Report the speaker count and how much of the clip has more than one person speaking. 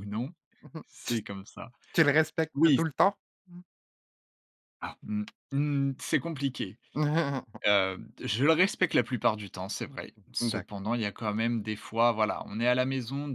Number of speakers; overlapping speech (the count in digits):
2, about 7%